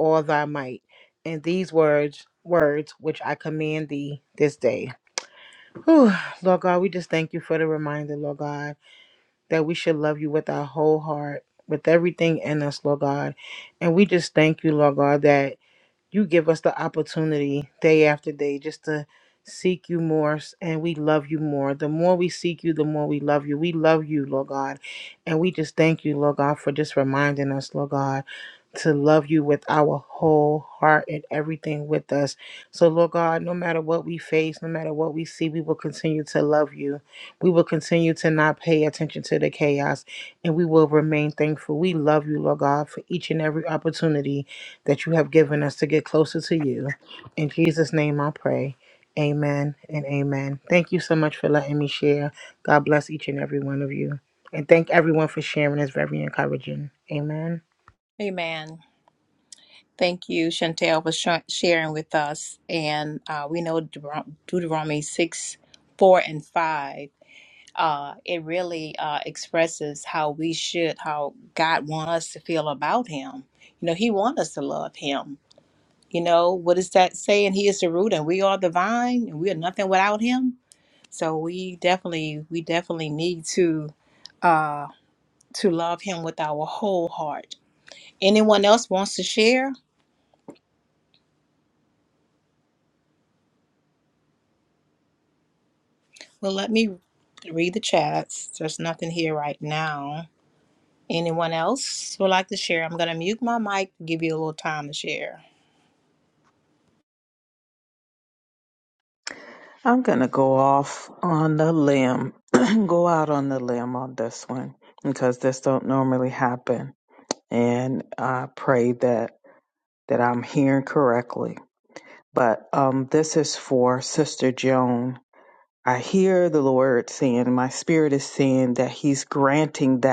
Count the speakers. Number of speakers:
three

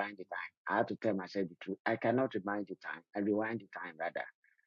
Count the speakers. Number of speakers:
one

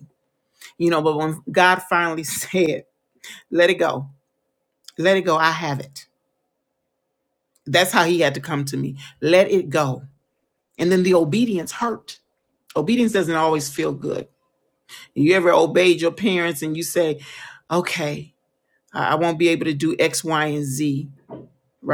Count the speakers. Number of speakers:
one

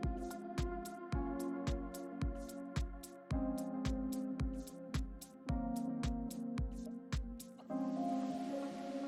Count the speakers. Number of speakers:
zero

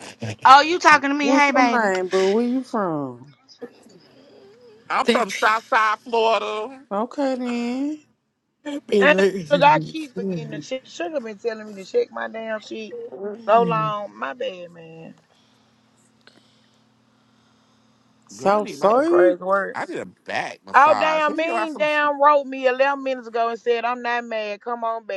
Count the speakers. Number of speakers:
five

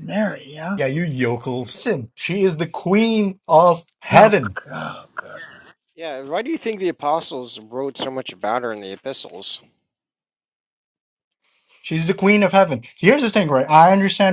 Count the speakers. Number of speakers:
three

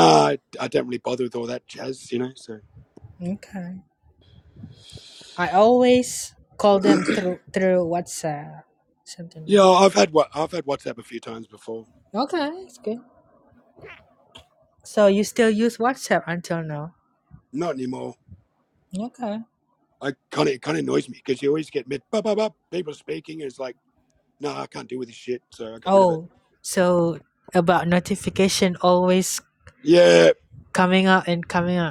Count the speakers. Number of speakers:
two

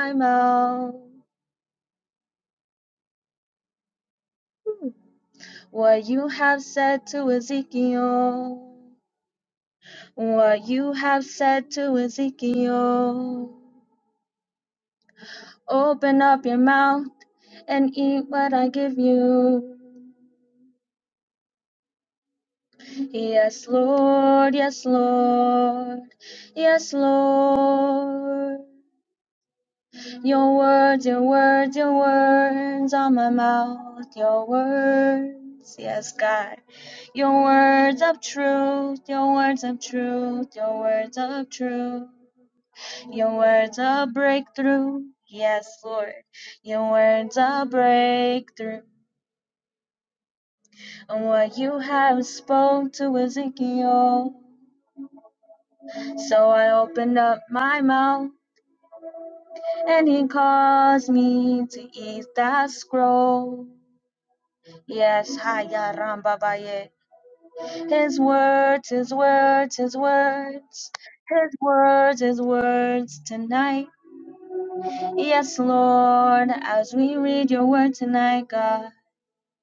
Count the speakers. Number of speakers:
one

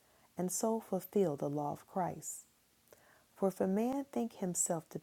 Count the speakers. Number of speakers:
one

